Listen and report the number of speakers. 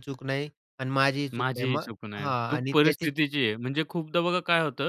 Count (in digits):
2